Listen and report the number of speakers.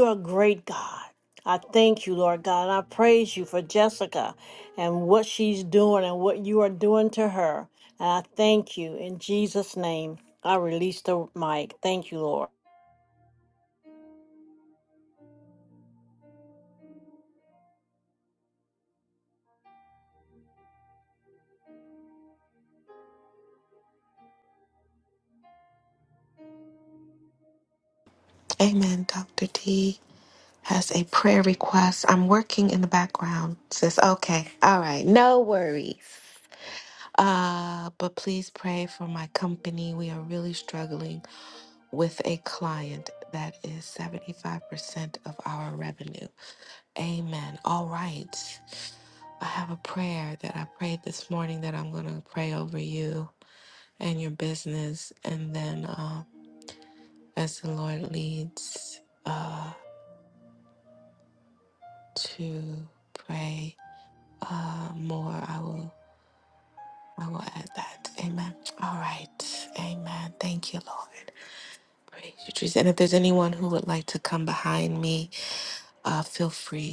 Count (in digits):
2